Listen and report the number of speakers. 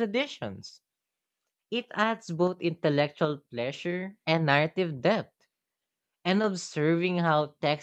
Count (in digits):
1